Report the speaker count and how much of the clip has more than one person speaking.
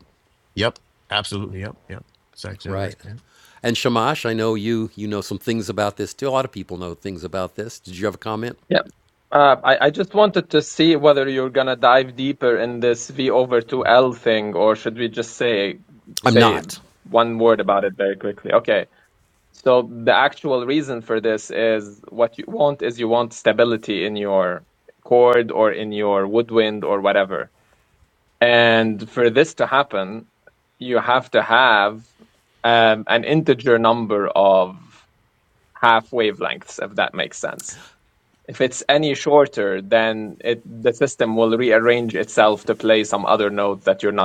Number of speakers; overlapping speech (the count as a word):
three, about 1%